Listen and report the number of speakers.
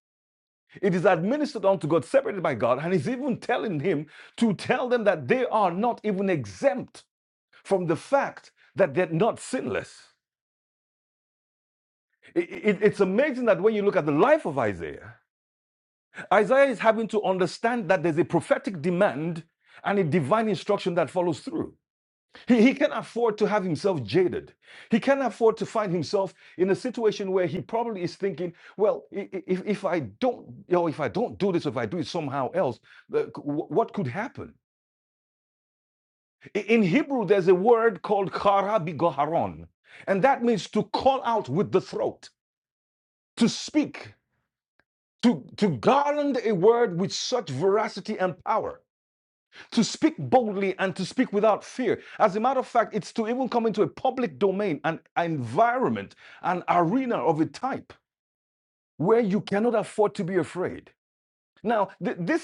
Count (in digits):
1